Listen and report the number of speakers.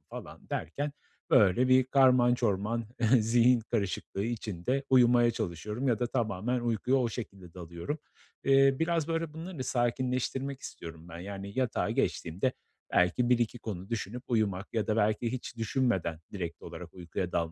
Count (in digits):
1